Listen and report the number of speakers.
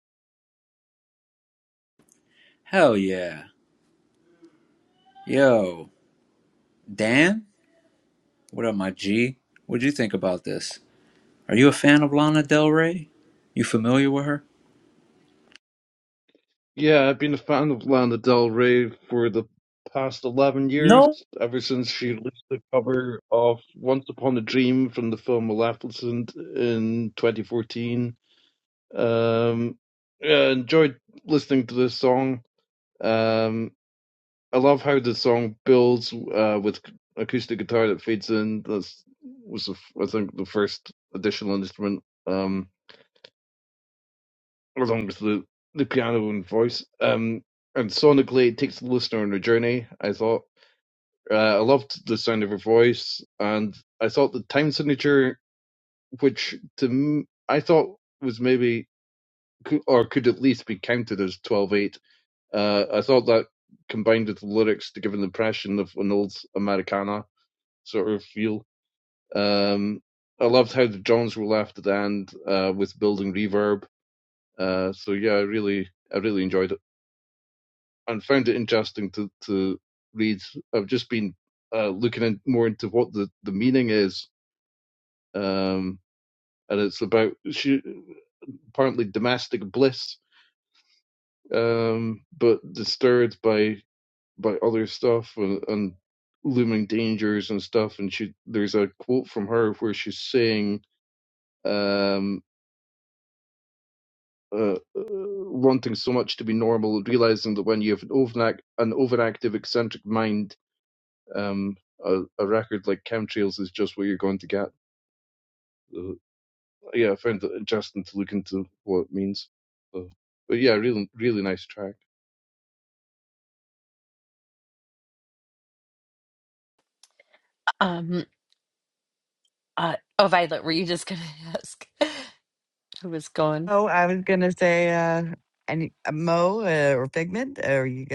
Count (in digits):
4